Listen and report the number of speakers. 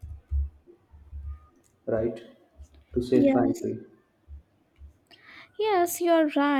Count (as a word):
two